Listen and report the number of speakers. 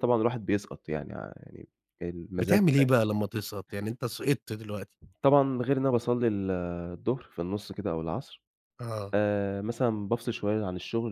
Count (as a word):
two